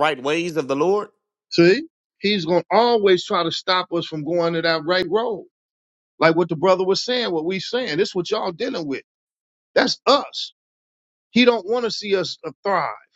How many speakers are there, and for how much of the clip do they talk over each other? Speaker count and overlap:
2, no overlap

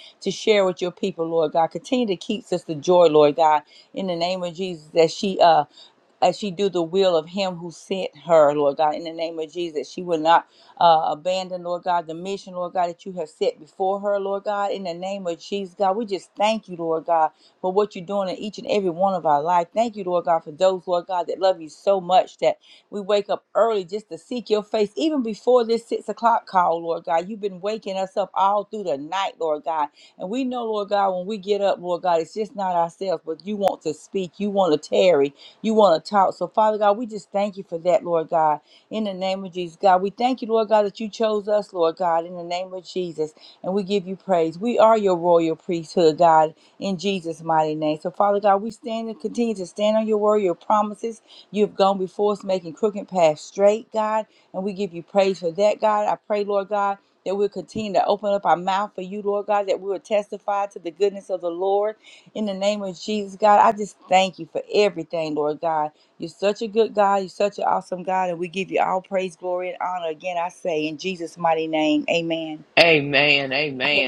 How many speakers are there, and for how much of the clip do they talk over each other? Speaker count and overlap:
2, no overlap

